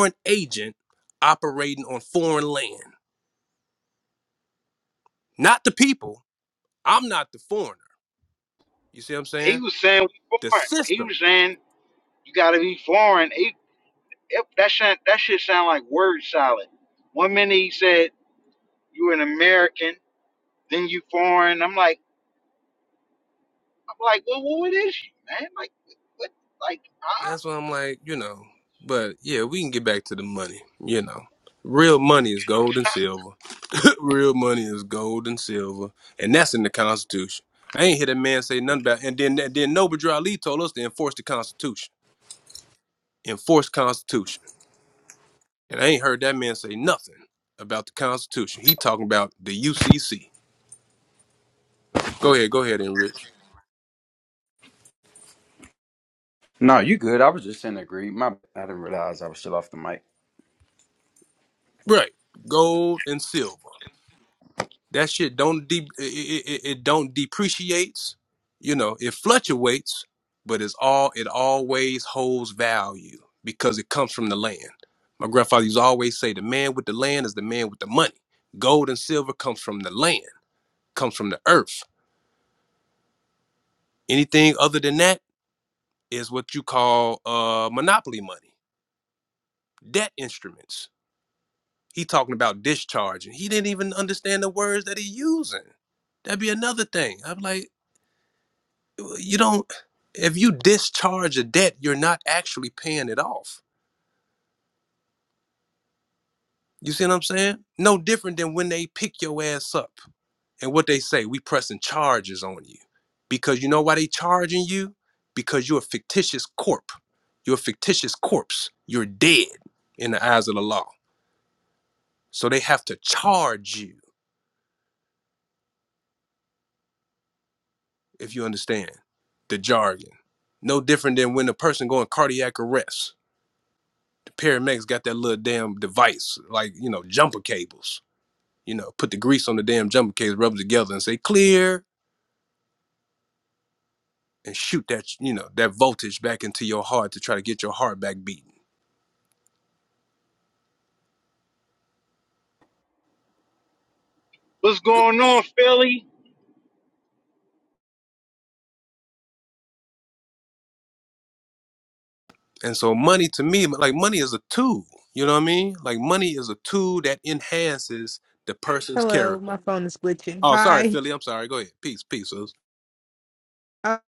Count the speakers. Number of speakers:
4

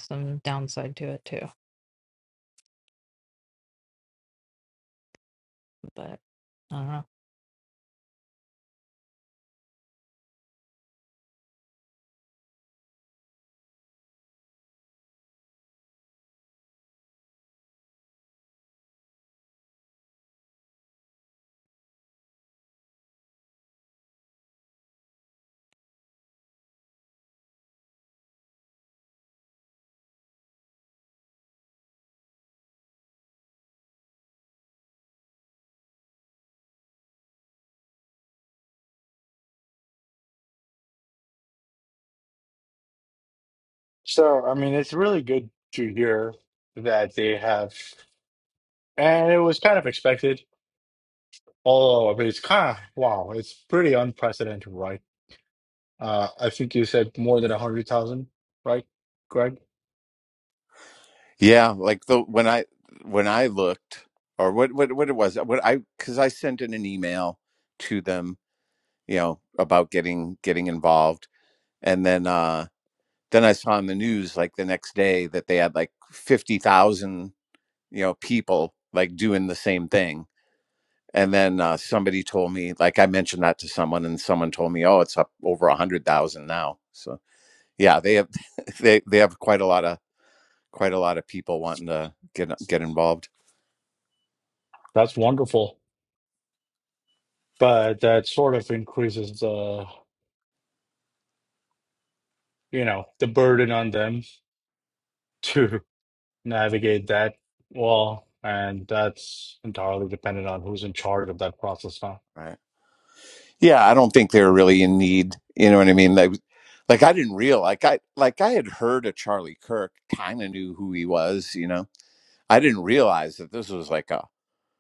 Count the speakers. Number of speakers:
3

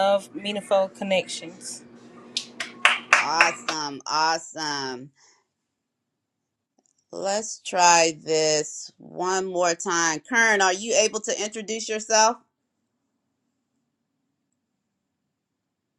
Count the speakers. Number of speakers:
2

